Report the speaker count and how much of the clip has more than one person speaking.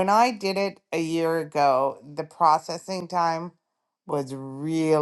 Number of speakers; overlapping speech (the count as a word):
one, no overlap